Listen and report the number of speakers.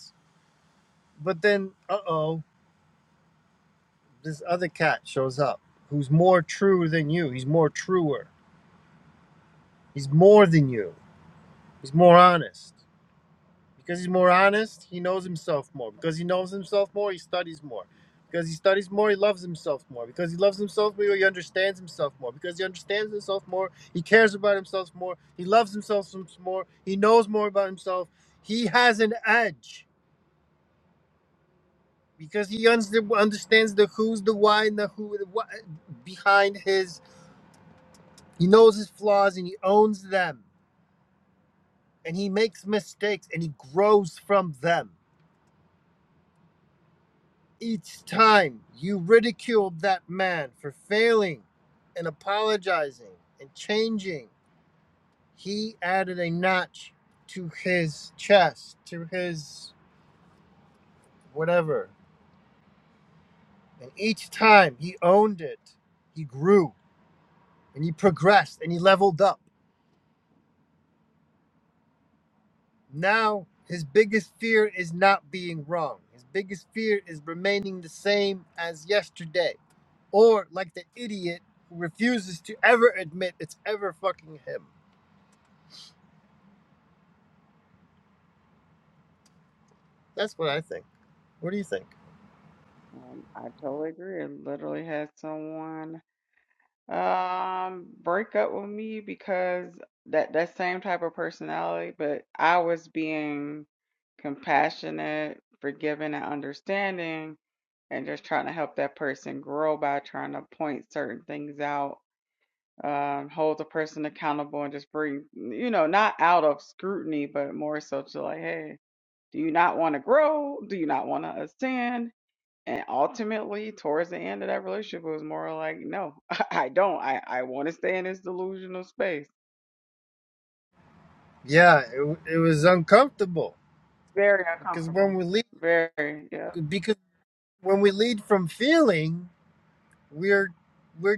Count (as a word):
two